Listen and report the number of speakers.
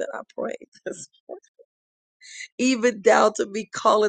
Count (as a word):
one